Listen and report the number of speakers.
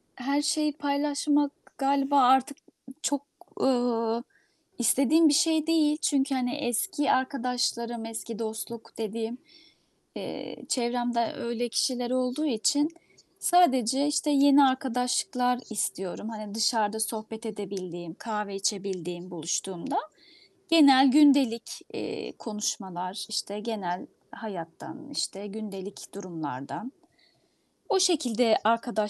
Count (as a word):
one